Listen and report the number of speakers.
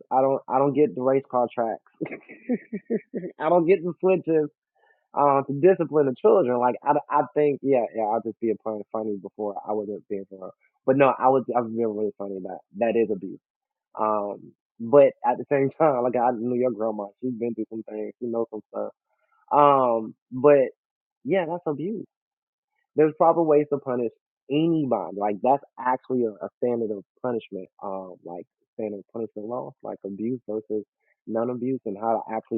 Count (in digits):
1